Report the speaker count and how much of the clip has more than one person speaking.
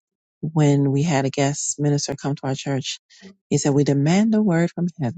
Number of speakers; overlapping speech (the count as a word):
one, no overlap